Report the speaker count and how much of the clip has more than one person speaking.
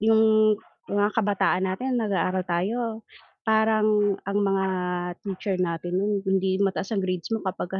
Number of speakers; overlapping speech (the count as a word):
one, no overlap